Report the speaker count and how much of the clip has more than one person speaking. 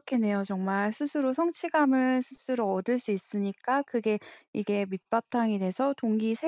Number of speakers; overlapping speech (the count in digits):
1, no overlap